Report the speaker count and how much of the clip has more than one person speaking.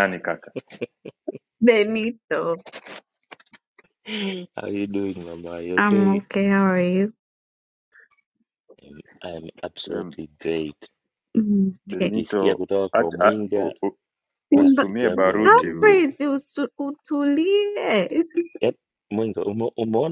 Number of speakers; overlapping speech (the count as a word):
three, about 19%